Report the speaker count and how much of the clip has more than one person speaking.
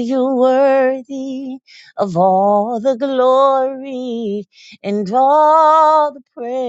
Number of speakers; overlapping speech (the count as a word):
one, no overlap